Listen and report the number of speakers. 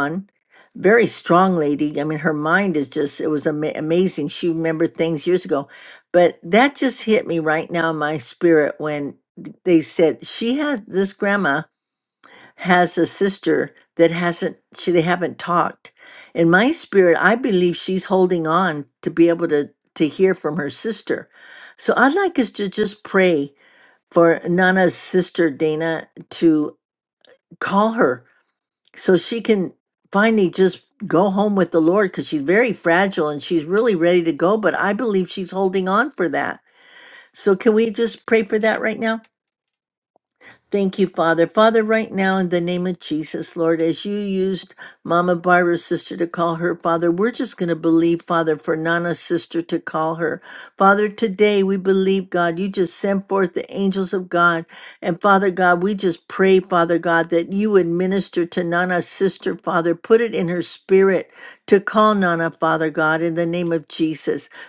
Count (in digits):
1